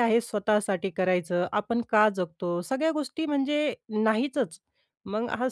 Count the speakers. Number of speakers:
1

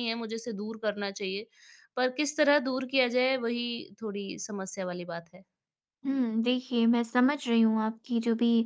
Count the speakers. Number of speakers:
2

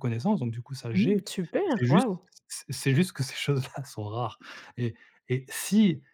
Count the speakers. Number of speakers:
2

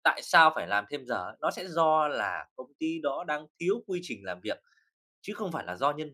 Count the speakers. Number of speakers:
1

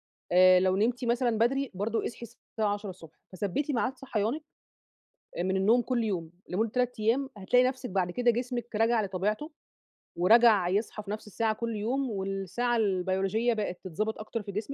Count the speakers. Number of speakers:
1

